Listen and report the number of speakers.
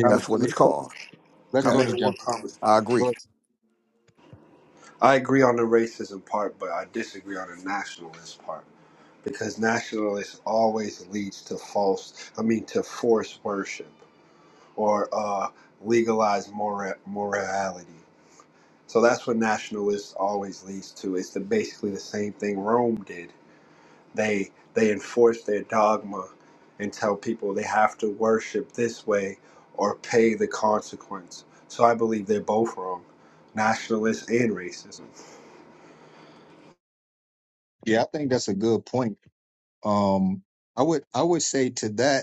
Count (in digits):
3